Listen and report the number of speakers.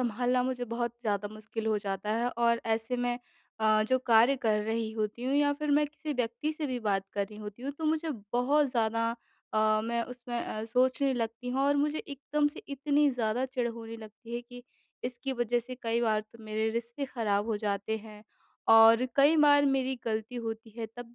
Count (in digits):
1